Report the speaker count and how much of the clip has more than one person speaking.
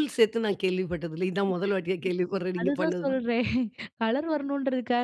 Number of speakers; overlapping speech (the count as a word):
two, about 12%